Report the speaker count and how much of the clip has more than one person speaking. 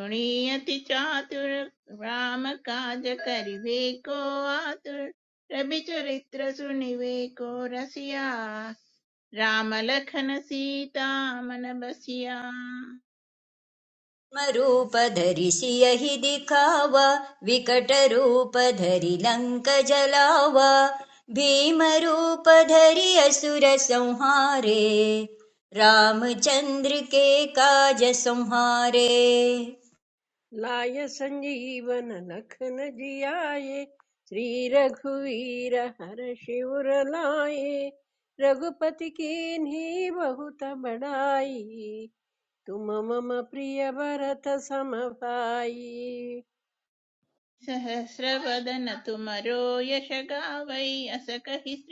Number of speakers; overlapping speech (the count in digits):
3, no overlap